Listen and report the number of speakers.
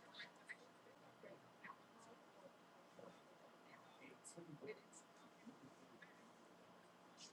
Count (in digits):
0